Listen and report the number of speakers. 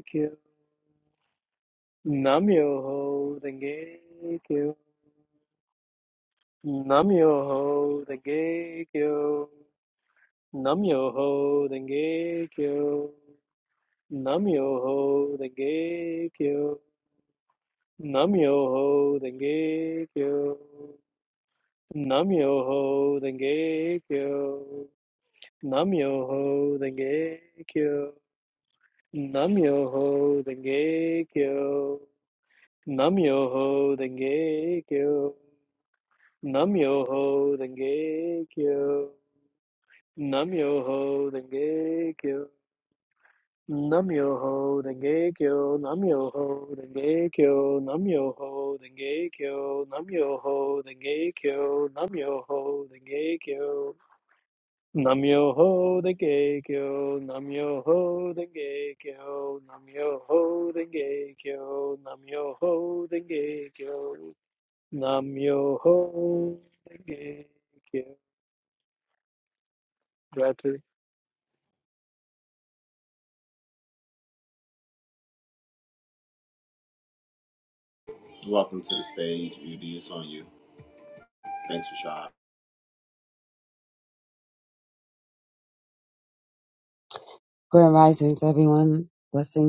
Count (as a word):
three